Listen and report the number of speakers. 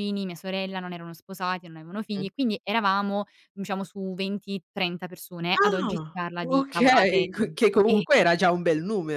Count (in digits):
2